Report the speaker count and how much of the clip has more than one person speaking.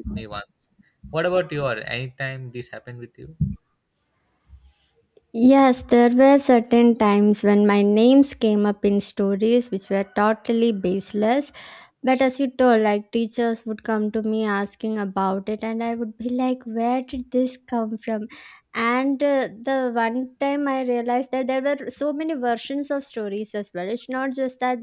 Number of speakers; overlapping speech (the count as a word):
two, no overlap